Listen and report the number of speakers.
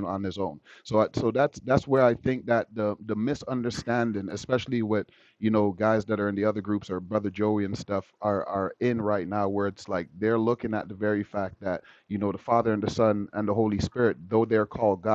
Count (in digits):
1